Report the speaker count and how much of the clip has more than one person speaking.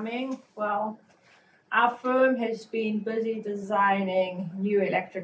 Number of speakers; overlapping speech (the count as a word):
one, no overlap